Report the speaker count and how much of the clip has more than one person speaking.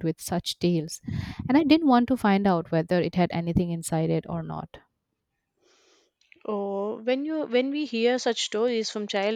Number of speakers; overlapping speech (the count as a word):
two, no overlap